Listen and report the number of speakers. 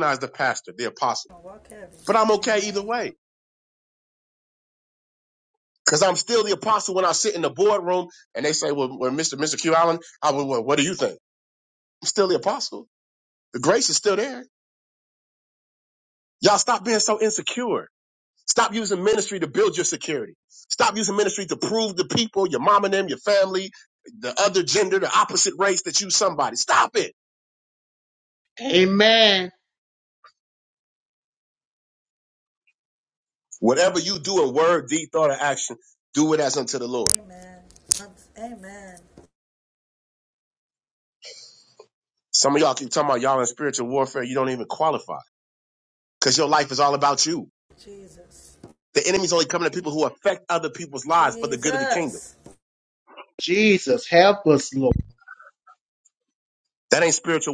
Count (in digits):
3